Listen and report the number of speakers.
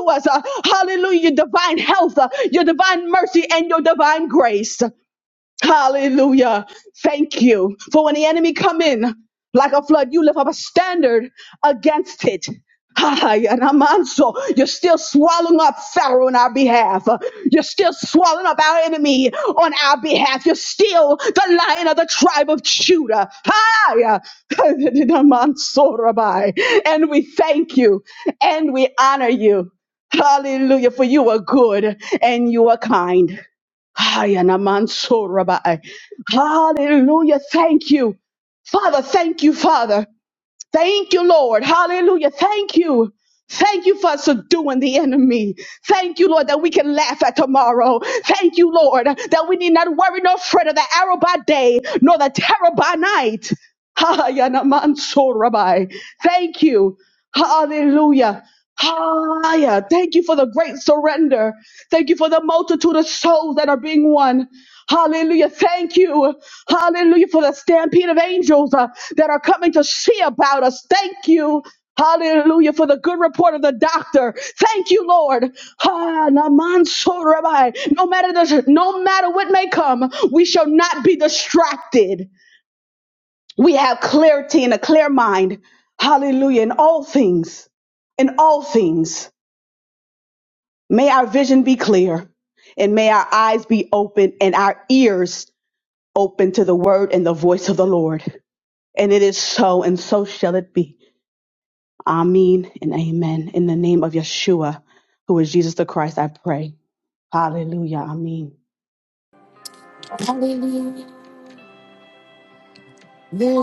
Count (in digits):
2